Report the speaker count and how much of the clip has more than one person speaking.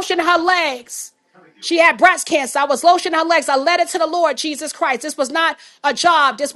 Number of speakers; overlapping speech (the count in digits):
1, no overlap